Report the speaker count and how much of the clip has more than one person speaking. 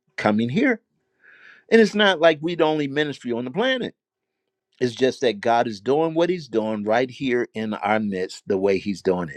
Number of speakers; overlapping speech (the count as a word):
one, no overlap